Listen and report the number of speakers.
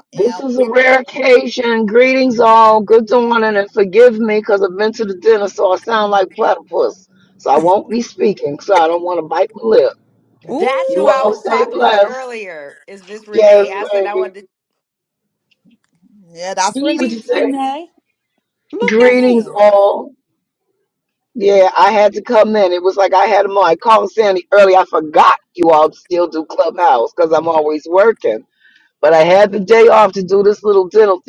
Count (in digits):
4